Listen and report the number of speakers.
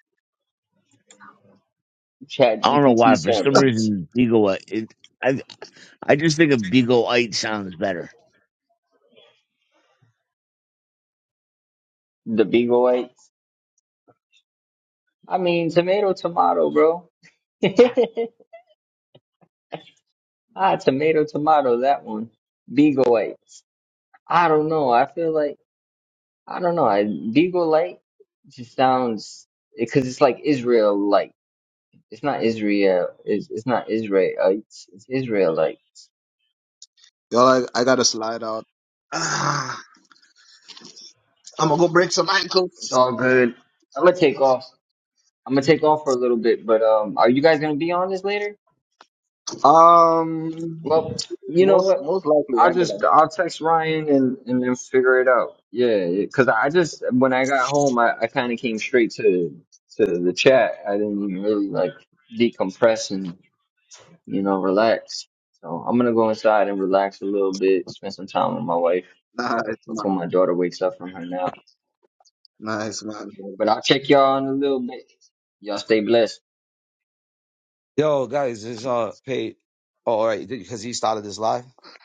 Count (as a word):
four